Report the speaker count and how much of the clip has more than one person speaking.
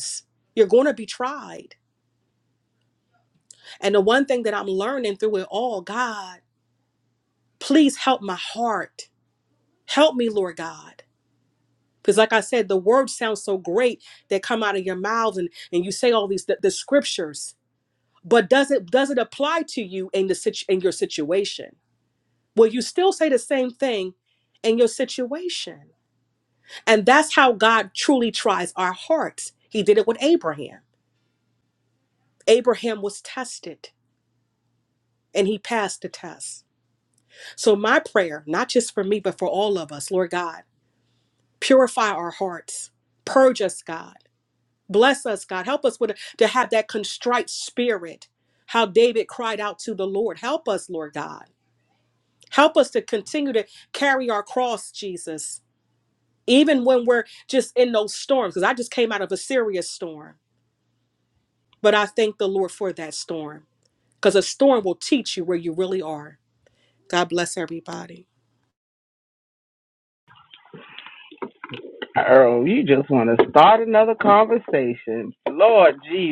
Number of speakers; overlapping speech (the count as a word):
two, no overlap